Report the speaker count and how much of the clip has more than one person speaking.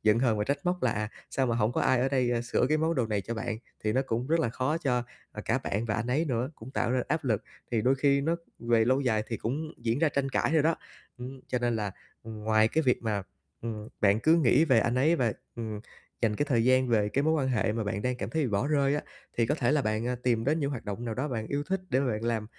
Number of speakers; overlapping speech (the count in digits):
1, no overlap